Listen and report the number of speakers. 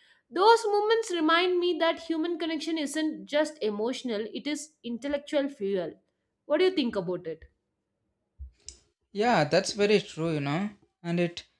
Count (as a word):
two